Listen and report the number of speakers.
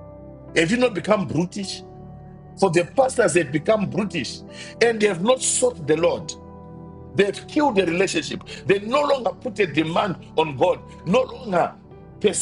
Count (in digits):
1